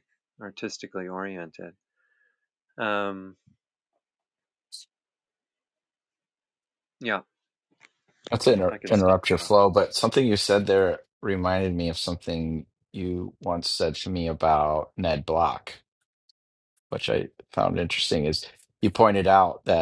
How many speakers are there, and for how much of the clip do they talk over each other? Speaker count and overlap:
2, about 5%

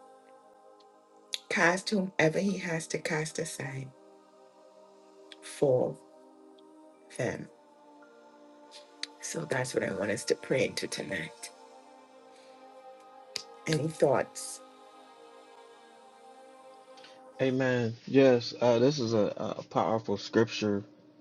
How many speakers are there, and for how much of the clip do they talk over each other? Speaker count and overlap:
2, no overlap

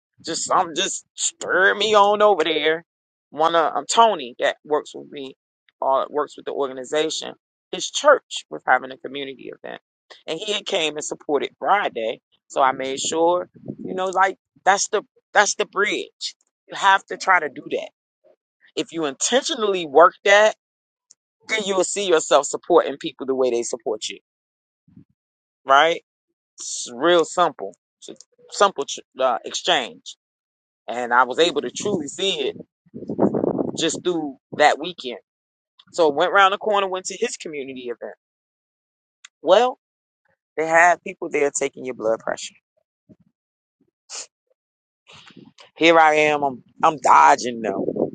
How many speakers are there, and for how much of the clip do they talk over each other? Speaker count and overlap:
1, no overlap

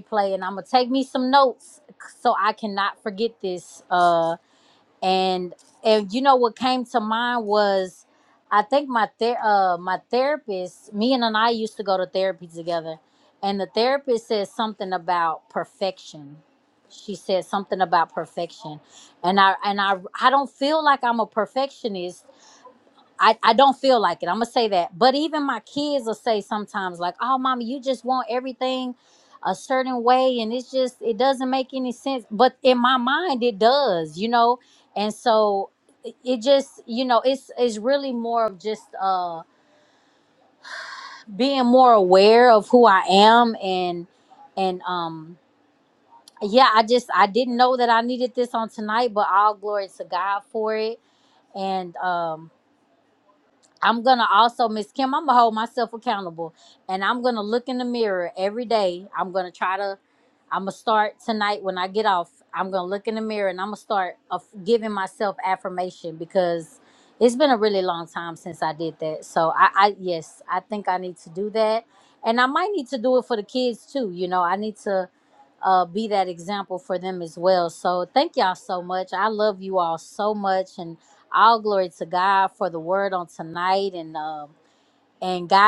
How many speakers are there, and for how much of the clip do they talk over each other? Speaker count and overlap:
1, no overlap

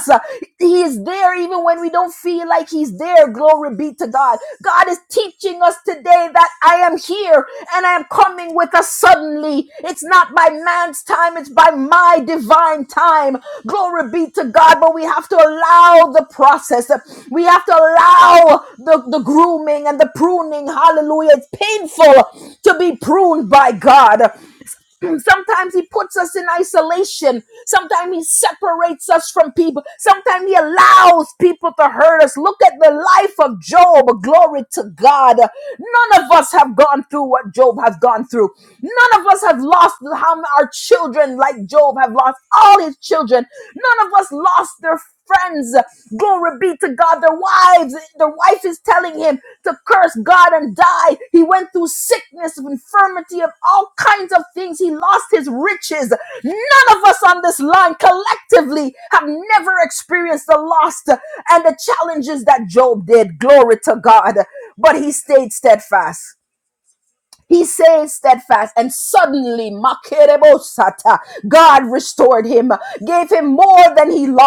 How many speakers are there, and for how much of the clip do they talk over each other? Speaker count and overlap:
1, no overlap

